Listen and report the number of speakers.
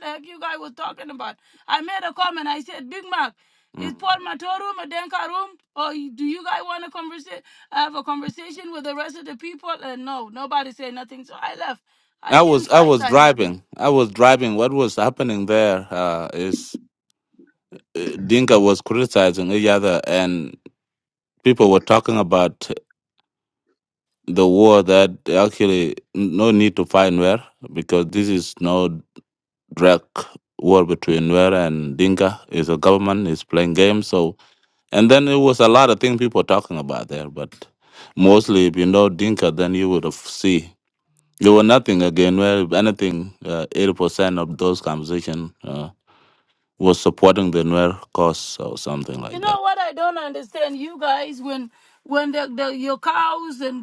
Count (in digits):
2